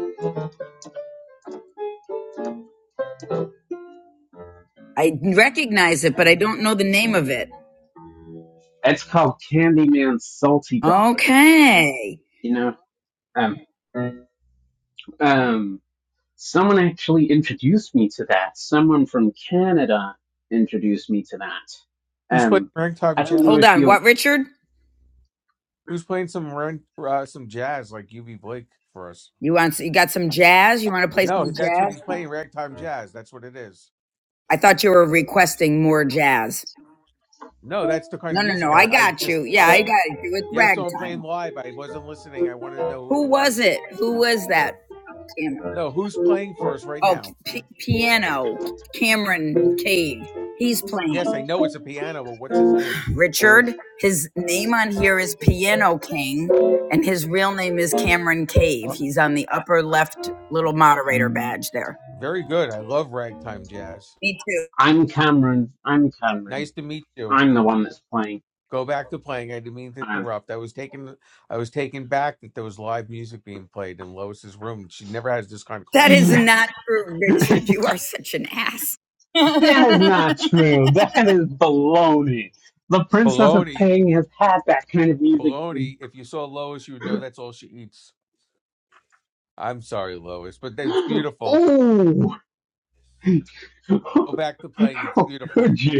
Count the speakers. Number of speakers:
three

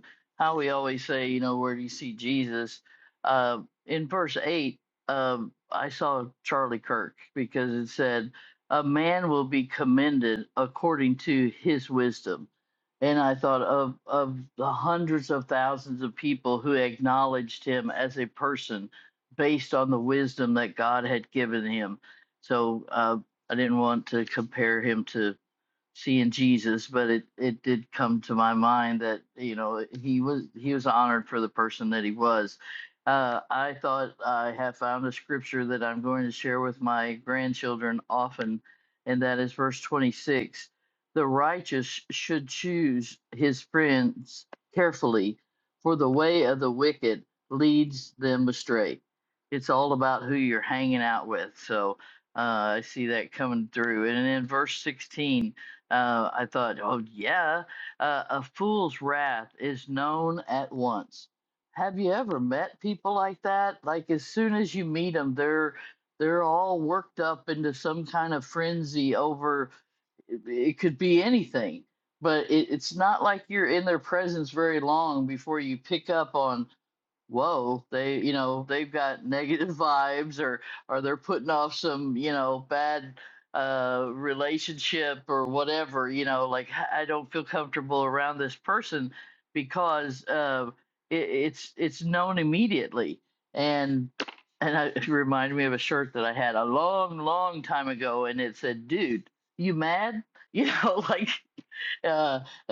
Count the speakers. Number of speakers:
one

